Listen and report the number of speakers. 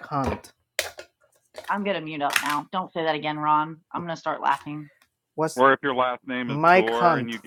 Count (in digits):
3